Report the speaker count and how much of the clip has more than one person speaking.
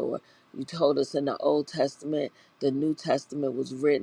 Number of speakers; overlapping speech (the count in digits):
1, no overlap